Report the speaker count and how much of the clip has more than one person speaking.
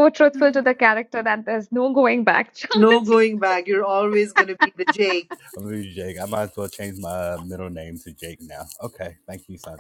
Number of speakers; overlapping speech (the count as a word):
three, about 3%